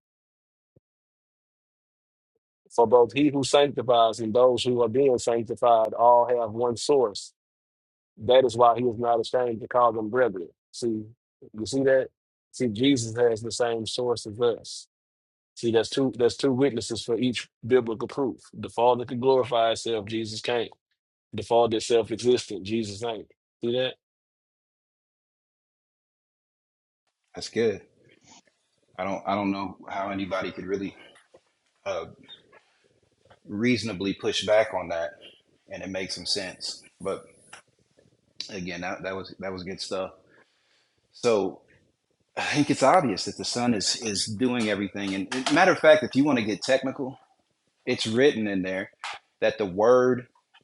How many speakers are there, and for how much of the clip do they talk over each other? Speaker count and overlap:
2, no overlap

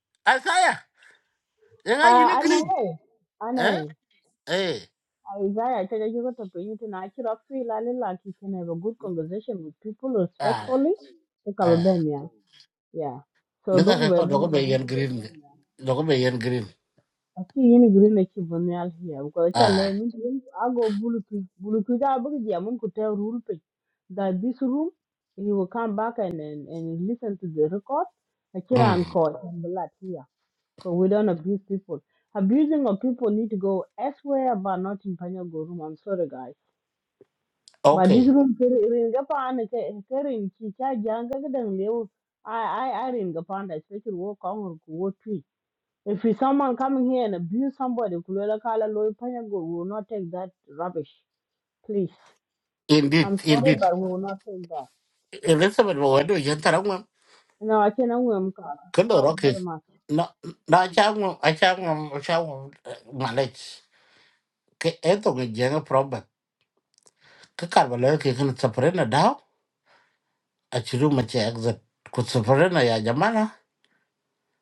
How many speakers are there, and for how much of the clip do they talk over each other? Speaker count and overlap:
2, about 7%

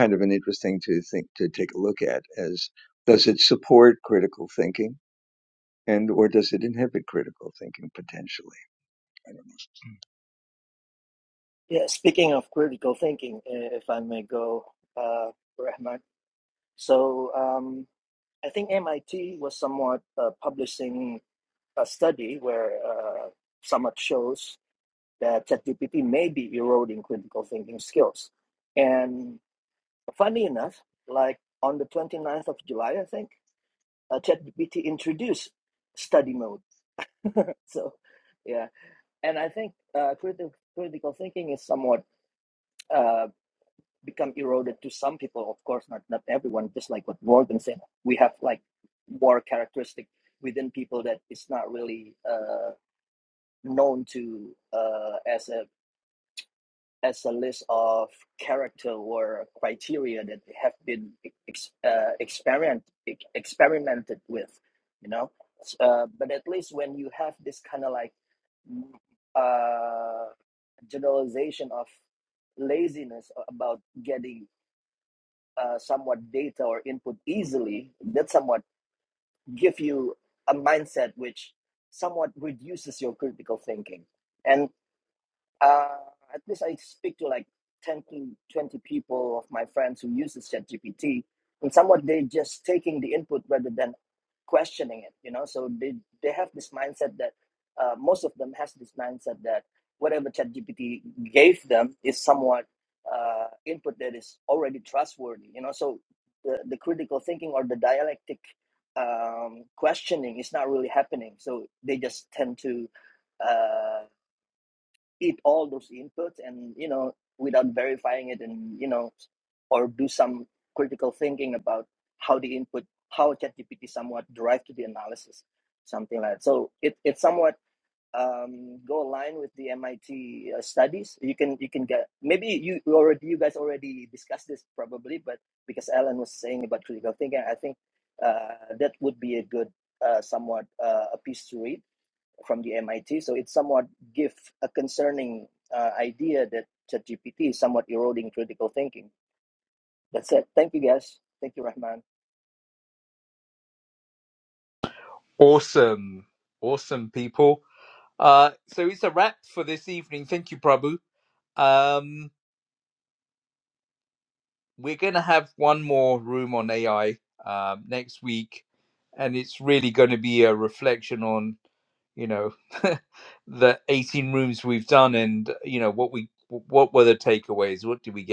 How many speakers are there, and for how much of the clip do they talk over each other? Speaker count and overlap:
3, no overlap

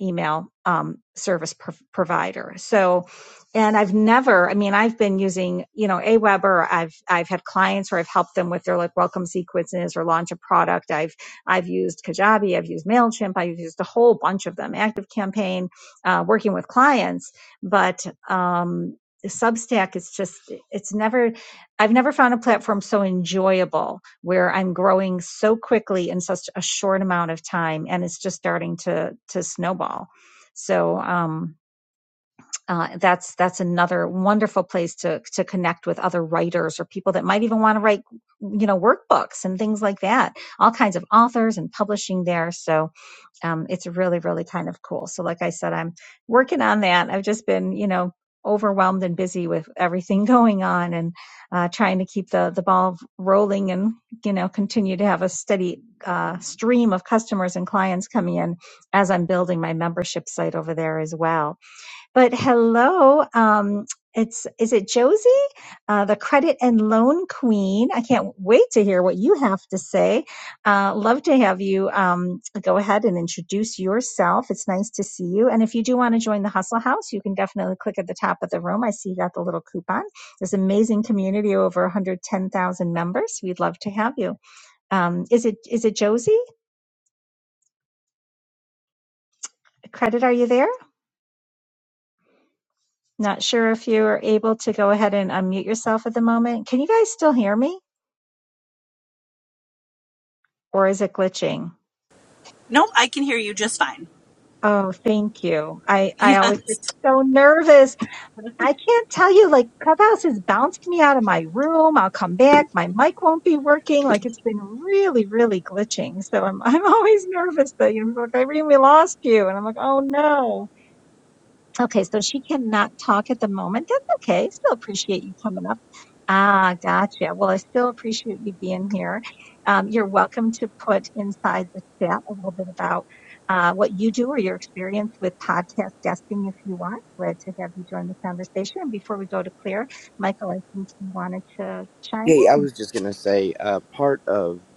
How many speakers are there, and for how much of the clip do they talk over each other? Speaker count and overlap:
3, about 1%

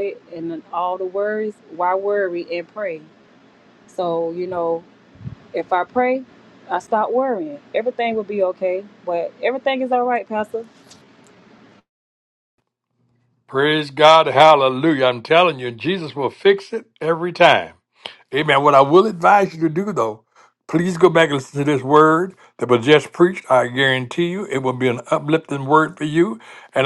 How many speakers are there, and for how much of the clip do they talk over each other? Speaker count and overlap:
2, no overlap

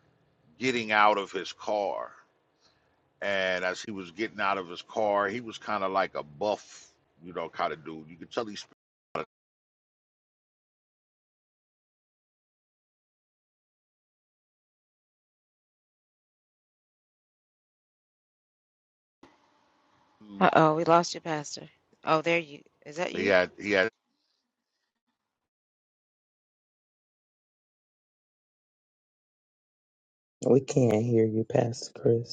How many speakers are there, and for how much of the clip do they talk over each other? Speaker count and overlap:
3, about 1%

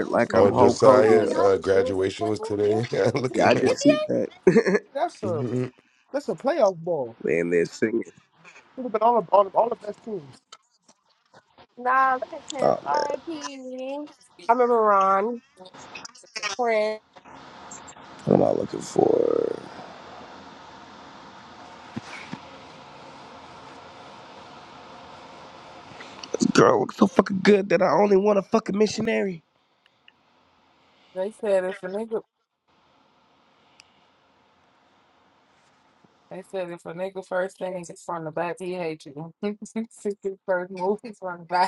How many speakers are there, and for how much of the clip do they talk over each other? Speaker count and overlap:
4, about 4%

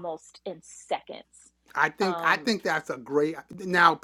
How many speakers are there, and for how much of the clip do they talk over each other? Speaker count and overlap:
2, about 11%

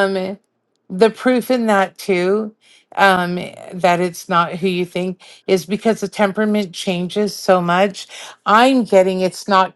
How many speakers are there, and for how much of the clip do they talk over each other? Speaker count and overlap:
1, no overlap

